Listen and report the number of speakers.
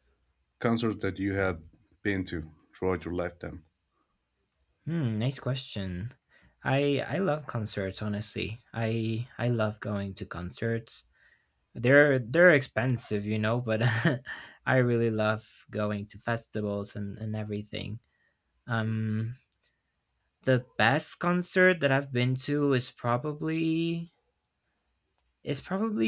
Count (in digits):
2